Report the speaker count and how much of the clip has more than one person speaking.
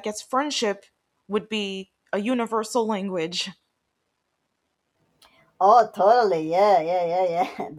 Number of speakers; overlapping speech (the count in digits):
2, no overlap